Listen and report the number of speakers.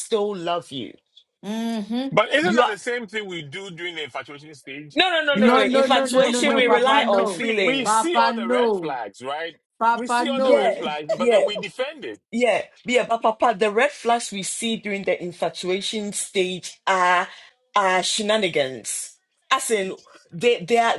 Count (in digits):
3